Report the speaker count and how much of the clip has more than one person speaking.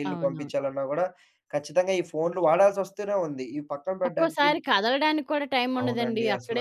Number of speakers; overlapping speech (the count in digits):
2, about 28%